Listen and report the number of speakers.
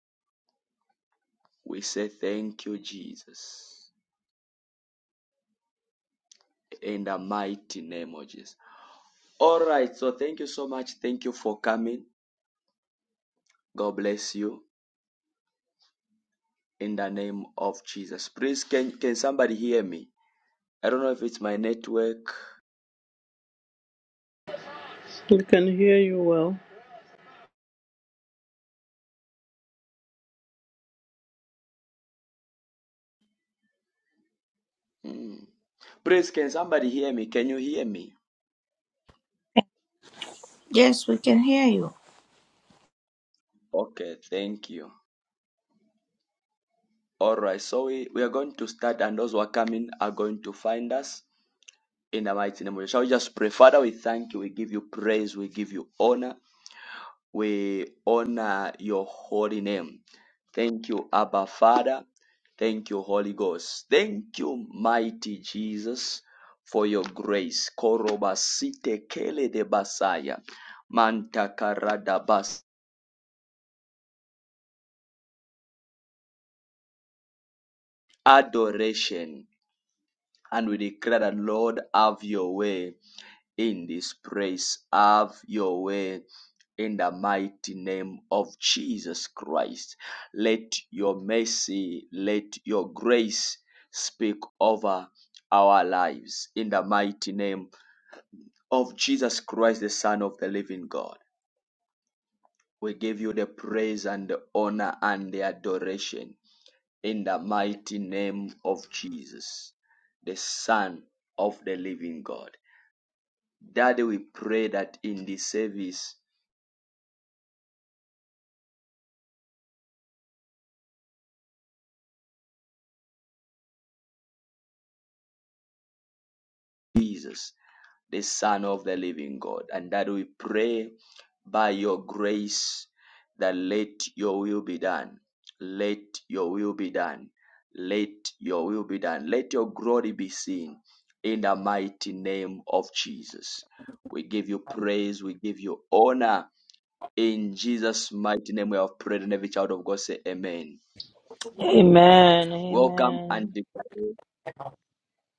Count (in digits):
4